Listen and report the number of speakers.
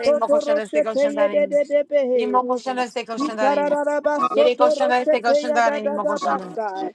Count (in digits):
2